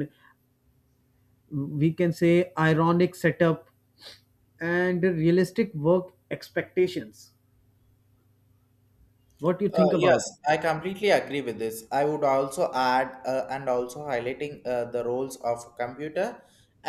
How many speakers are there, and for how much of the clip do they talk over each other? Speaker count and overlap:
2, about 3%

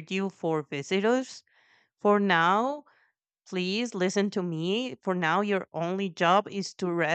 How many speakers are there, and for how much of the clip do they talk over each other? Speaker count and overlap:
1, no overlap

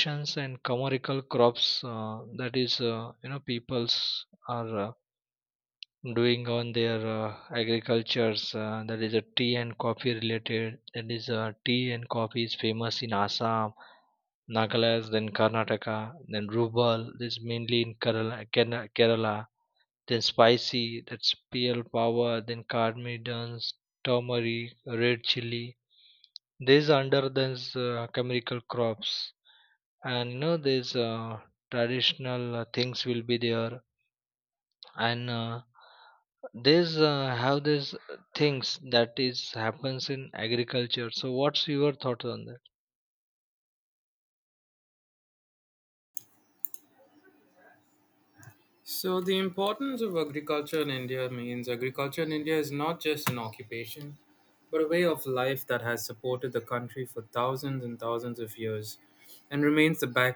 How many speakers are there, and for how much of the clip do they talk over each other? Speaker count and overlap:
2, no overlap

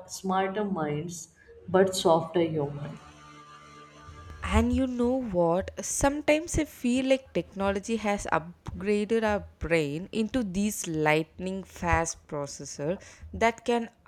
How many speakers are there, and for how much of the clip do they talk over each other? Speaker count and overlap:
2, no overlap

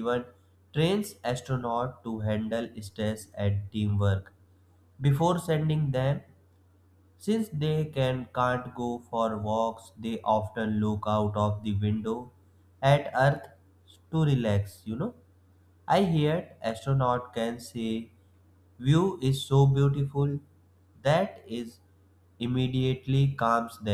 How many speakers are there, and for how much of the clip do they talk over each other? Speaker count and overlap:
1, no overlap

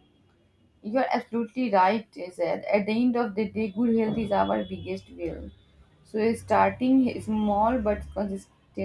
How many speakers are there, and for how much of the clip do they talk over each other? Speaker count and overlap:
1, no overlap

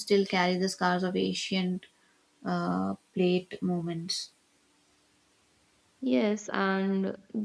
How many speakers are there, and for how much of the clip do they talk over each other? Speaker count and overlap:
2, no overlap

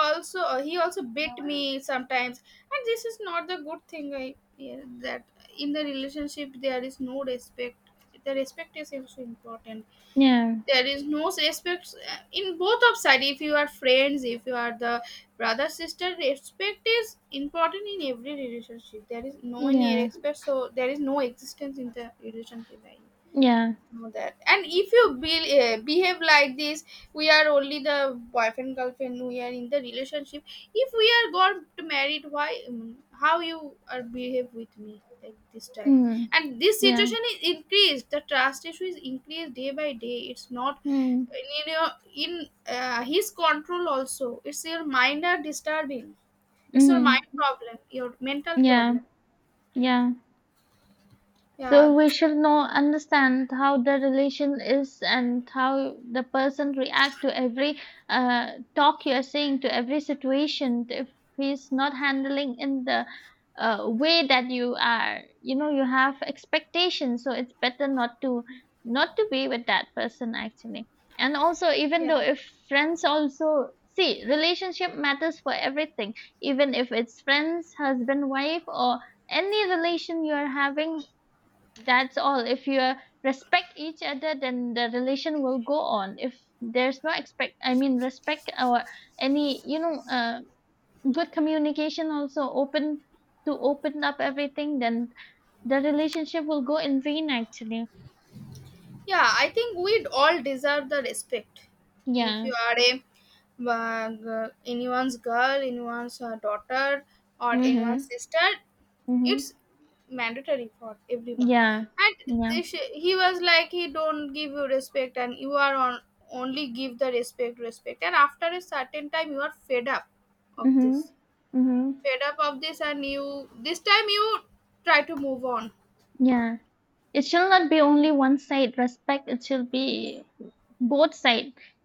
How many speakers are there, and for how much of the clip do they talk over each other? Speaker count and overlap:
2, about 3%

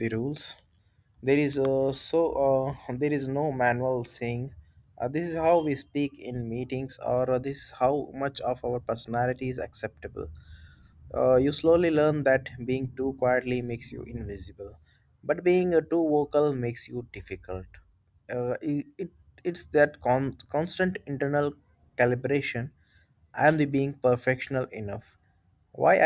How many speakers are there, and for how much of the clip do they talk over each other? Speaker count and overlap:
1, no overlap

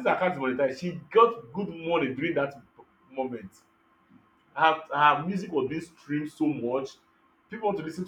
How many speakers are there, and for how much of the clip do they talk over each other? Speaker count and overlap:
1, no overlap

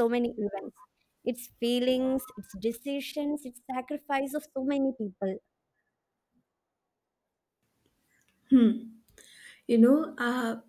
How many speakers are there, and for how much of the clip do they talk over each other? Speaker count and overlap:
2, no overlap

